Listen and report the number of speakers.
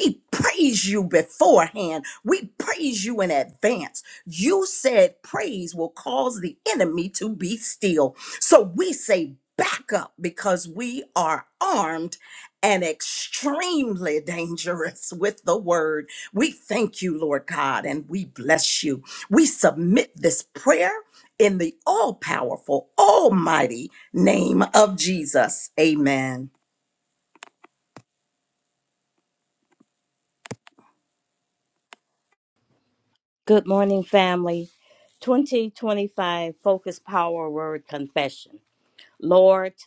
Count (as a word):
two